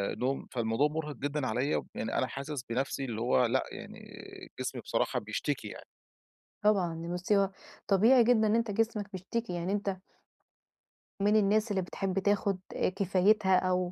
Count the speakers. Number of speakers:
two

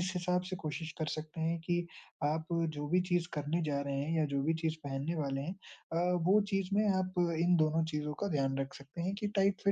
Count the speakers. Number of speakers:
one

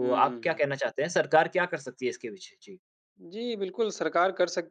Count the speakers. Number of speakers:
two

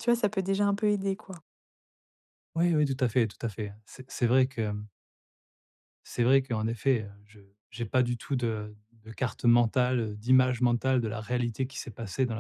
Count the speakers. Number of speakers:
two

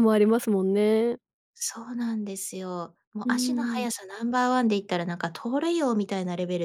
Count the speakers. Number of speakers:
two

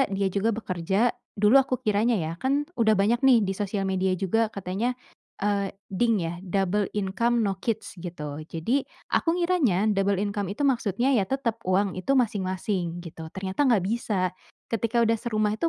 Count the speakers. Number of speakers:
one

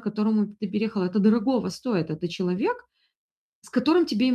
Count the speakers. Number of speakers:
one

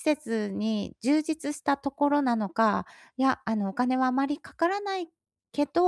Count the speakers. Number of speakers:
one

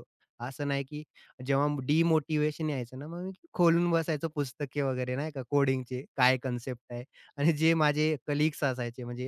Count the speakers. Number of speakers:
one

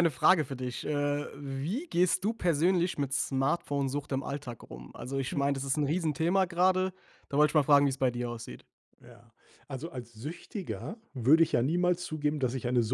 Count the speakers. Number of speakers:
two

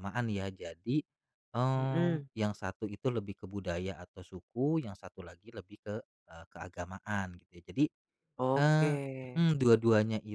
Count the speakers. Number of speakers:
two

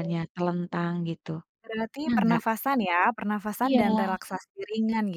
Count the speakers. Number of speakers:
two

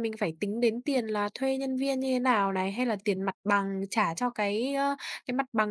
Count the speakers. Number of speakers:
one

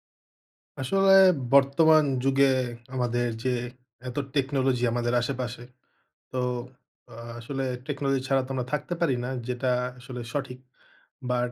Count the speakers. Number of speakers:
one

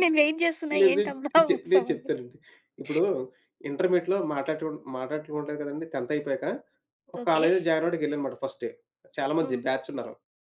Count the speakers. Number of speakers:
two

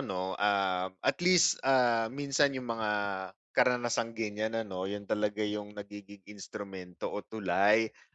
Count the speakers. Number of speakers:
one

